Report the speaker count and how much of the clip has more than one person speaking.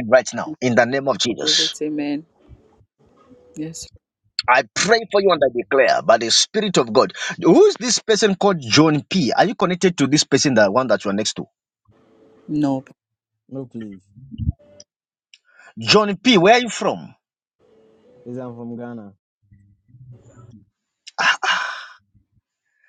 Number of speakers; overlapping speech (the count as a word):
three, about 1%